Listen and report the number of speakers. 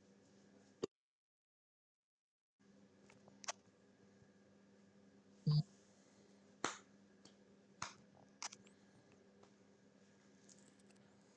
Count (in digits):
0